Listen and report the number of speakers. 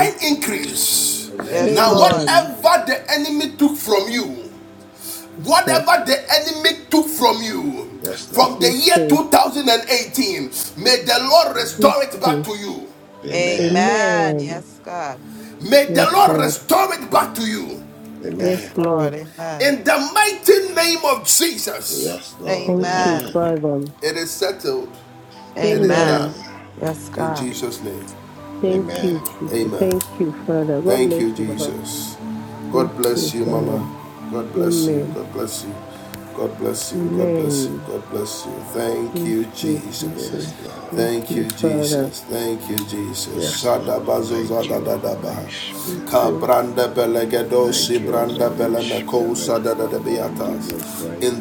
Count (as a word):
four